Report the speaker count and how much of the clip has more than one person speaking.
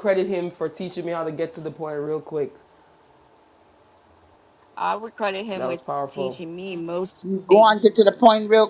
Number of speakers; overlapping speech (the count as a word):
three, about 7%